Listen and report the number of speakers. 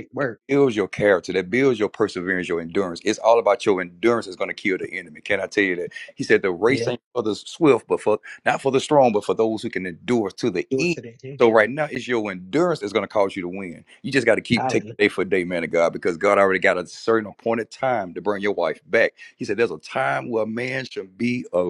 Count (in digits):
2